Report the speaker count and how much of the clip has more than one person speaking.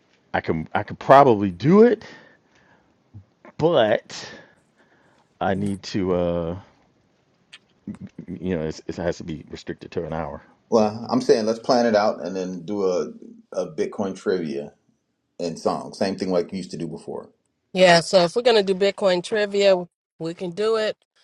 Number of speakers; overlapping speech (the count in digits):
3, no overlap